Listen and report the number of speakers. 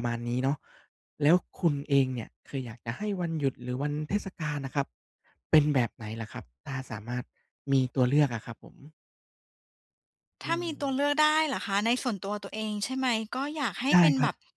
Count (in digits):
2